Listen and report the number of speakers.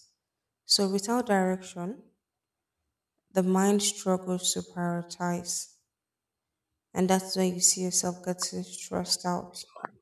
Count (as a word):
one